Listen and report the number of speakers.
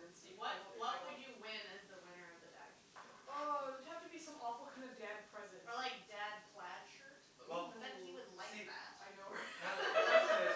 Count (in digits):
3